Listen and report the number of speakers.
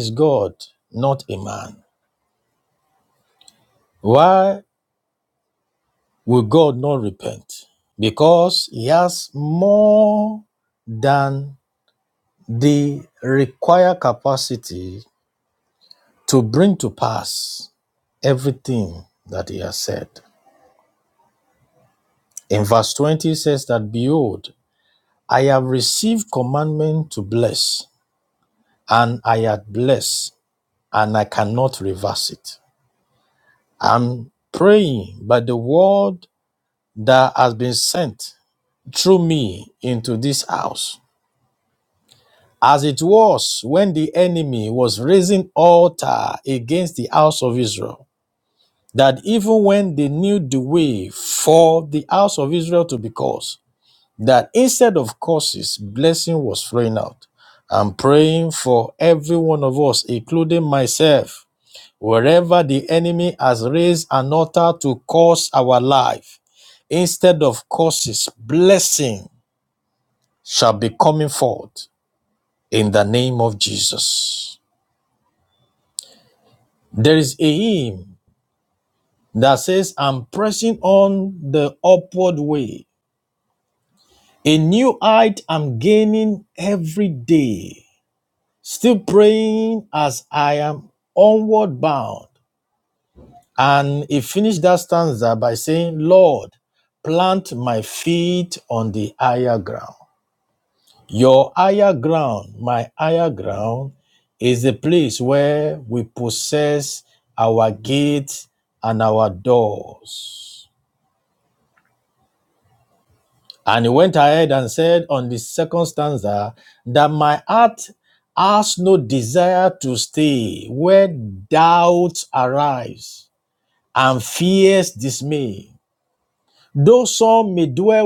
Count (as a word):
one